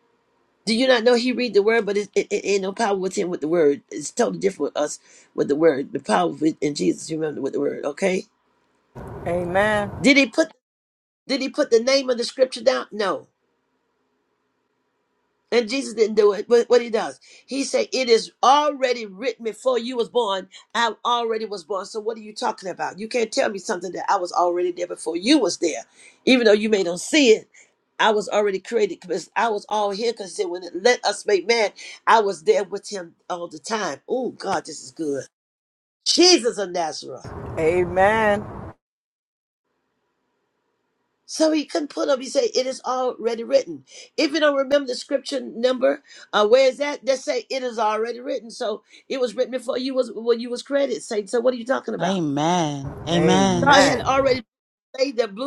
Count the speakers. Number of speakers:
three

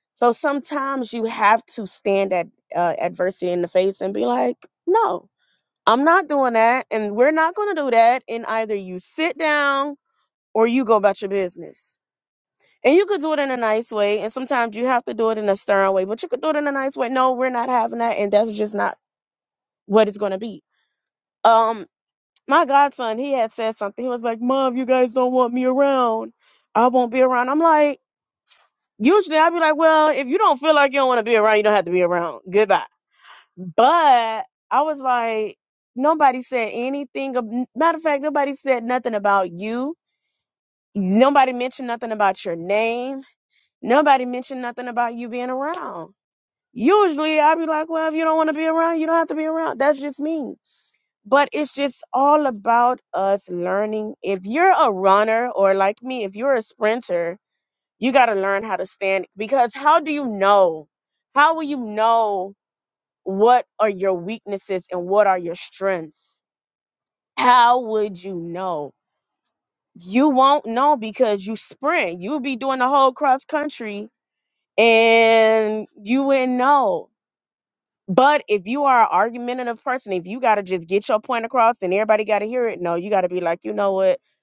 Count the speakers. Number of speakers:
one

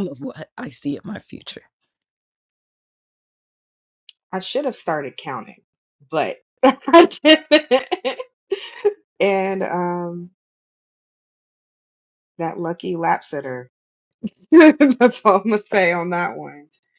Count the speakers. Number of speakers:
two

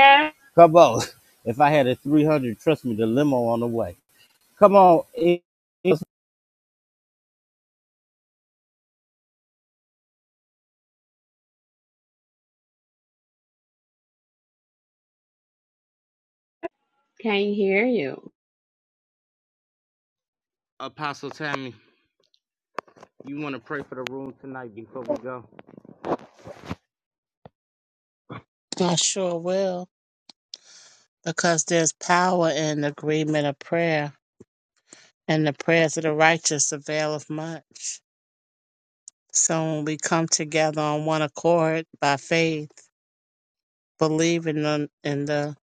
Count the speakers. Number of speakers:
three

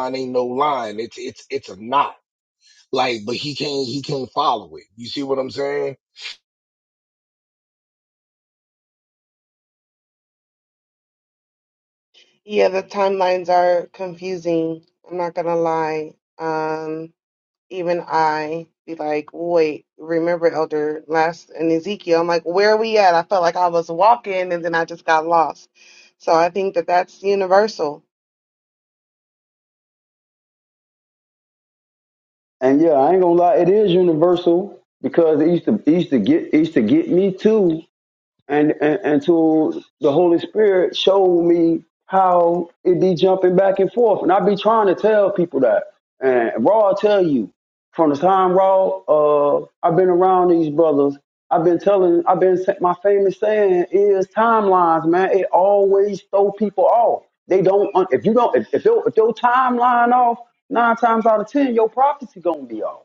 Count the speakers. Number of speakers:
three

